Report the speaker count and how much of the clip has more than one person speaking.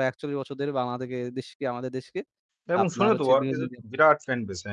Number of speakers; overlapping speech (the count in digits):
2, about 21%